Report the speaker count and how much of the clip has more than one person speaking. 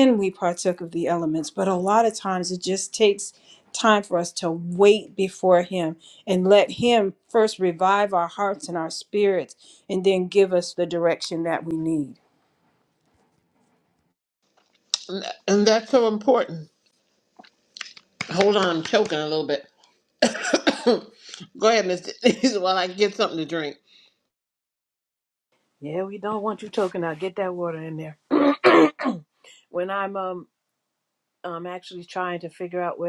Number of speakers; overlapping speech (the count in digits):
3, no overlap